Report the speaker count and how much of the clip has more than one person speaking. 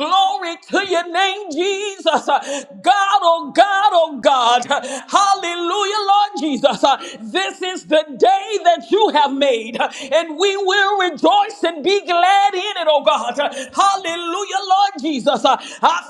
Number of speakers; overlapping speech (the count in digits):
1, no overlap